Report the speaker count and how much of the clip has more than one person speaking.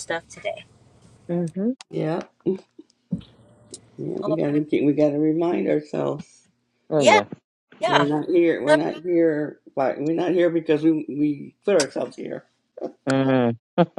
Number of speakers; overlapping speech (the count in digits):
3, about 5%